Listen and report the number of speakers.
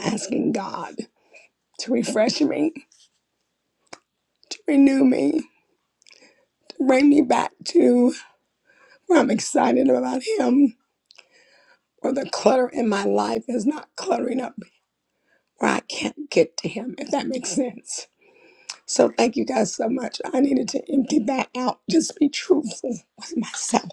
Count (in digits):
1